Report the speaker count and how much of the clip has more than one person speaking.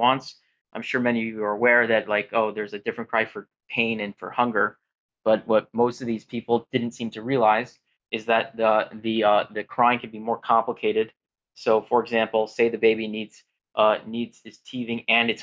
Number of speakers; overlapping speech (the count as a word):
one, no overlap